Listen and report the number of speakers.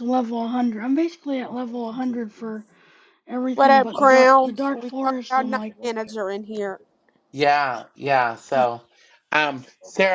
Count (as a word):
three